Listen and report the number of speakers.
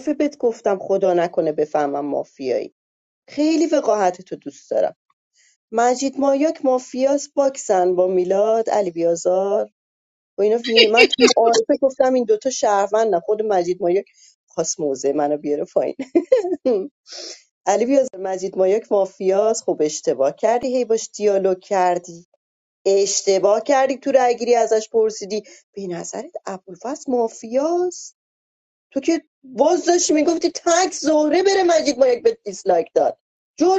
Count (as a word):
one